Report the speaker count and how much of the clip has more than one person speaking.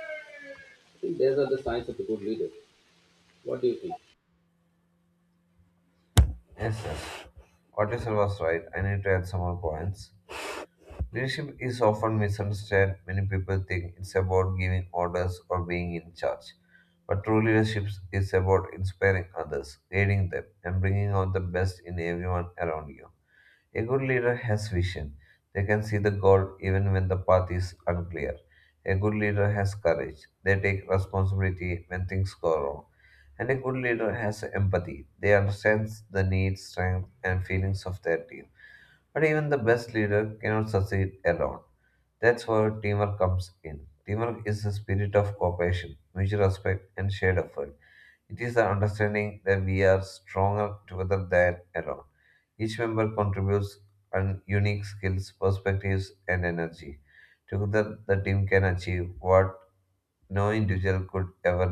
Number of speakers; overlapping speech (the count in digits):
2, no overlap